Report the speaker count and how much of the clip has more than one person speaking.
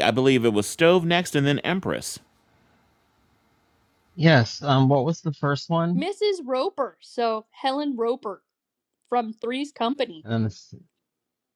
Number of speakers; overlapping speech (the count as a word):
three, about 1%